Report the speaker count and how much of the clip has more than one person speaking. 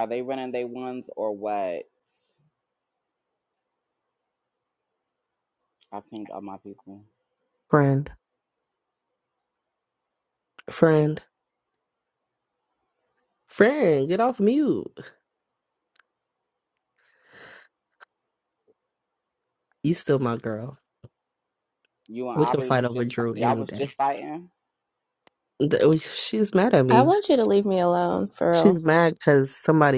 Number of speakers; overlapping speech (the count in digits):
3, about 7%